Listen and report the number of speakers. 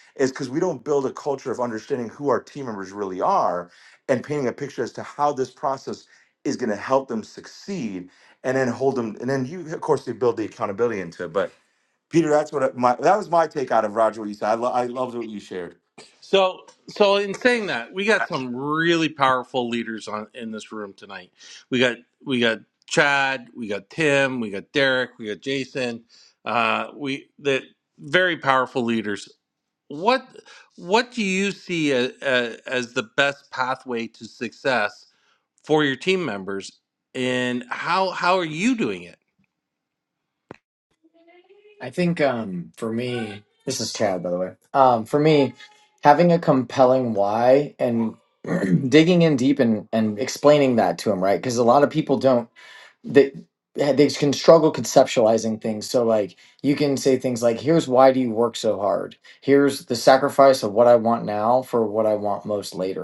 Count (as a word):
three